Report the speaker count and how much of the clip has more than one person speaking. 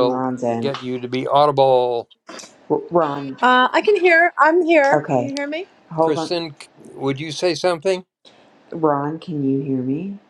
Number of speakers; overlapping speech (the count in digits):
3, about 13%